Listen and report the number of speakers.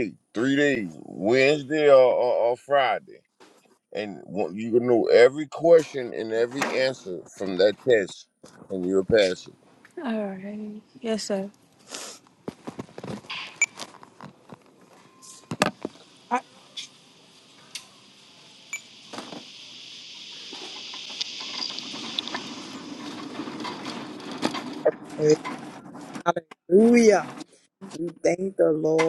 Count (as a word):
three